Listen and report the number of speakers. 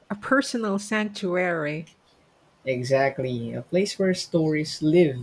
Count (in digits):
2